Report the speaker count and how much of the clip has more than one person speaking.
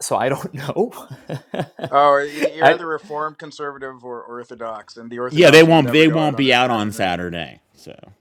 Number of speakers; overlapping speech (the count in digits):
3, about 25%